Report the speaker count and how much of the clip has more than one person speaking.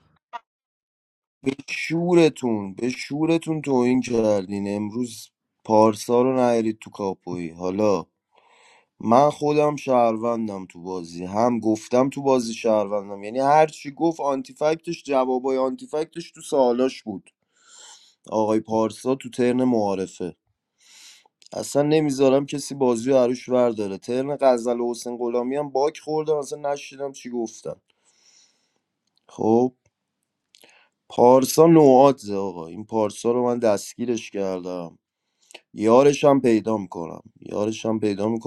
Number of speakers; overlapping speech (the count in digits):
1, no overlap